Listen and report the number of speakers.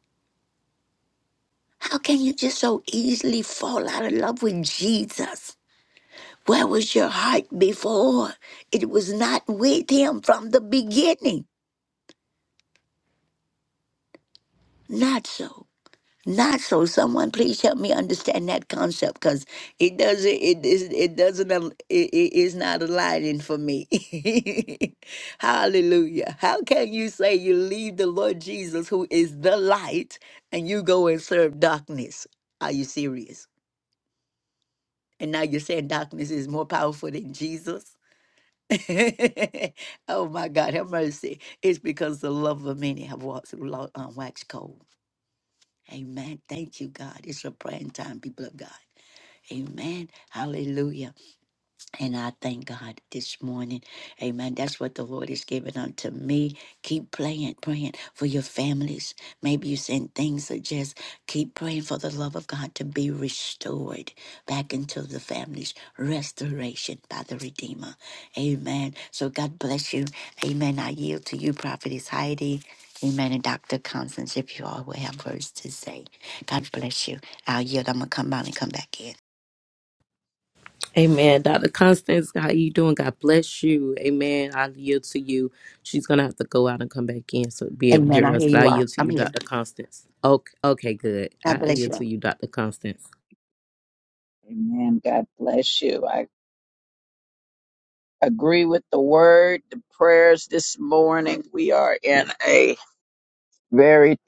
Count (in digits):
3